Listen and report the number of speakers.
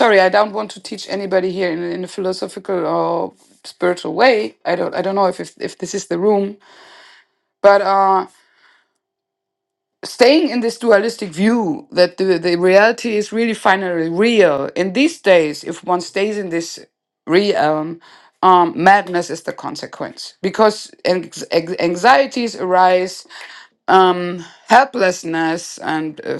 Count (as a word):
one